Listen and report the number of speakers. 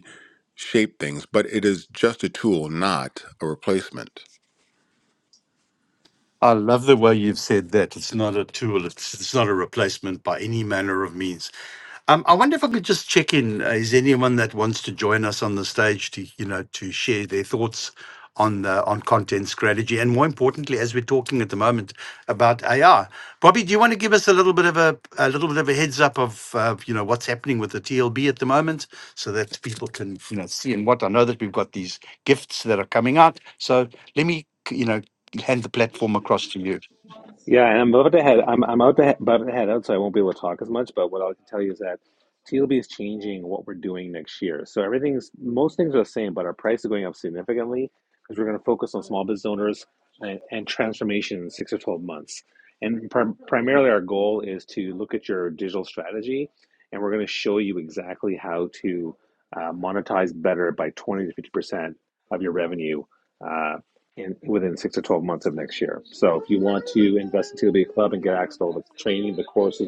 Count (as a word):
three